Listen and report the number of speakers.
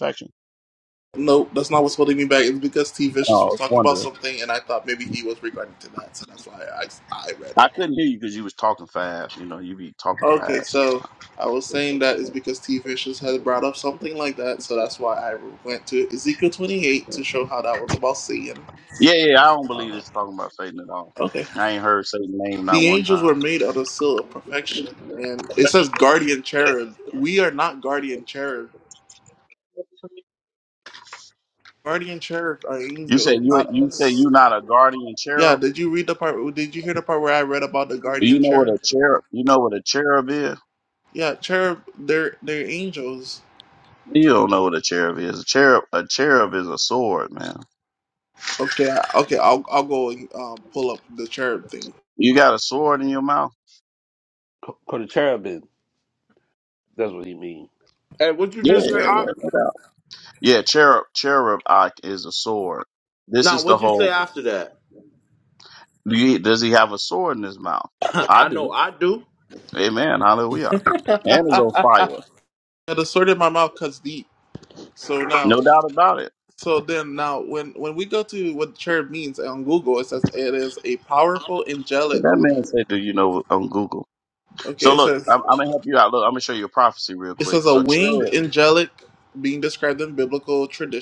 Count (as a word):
four